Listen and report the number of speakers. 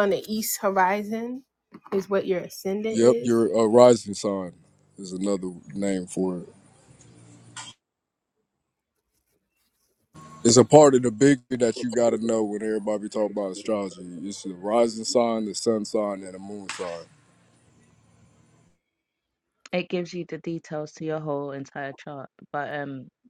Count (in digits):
3